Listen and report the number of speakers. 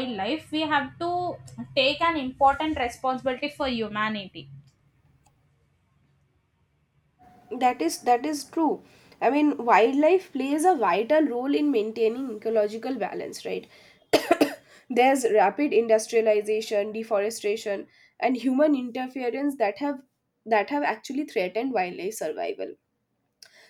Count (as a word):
two